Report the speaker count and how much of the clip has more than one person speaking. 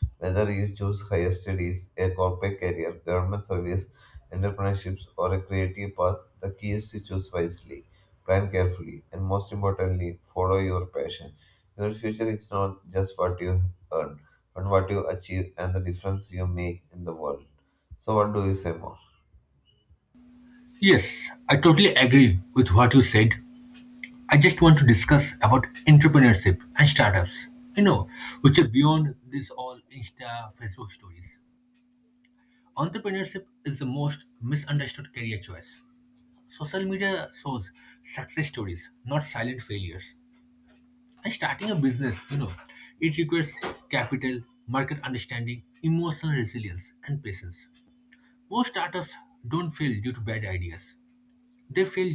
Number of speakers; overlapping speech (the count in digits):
2, no overlap